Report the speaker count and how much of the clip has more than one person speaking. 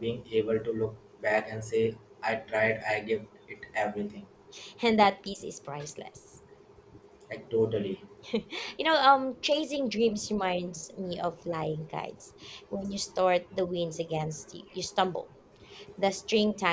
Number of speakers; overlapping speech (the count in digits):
2, no overlap